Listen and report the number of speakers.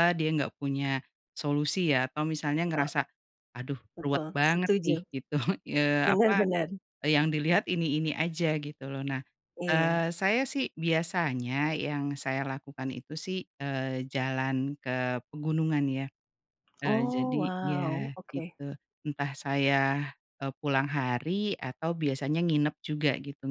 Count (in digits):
2